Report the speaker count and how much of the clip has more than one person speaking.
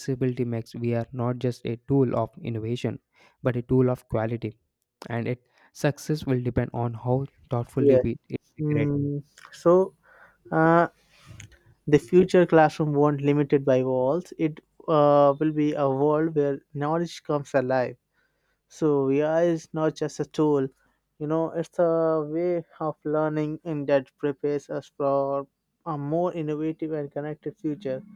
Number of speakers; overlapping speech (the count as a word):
two, about 2%